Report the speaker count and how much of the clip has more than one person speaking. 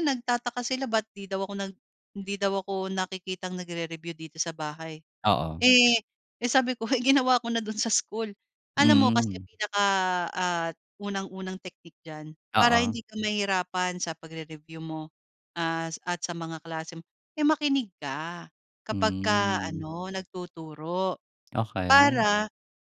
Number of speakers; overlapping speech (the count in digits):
2, about 10%